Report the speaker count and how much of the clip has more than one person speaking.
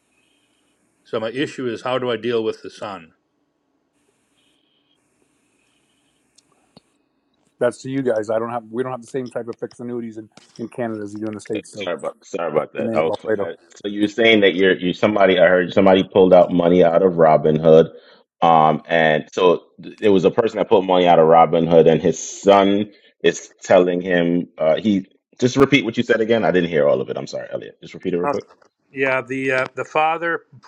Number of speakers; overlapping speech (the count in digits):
3, about 3%